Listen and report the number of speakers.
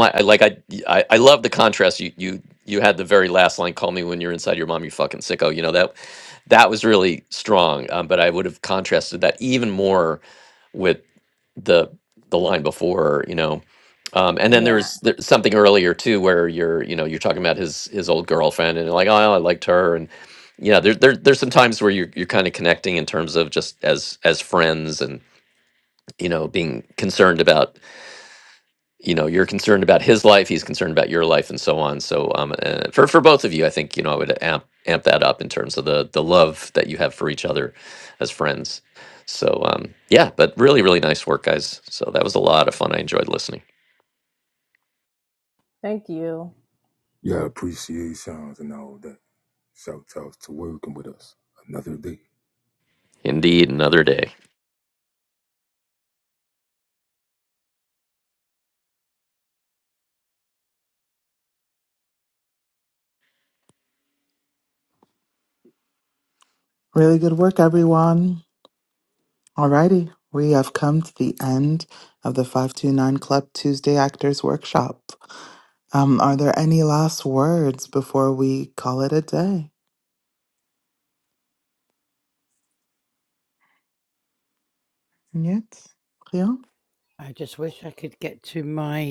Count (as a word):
five